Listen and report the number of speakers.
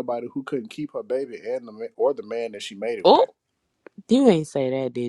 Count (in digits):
2